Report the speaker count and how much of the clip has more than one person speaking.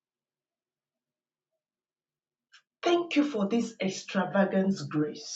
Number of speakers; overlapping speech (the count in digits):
1, no overlap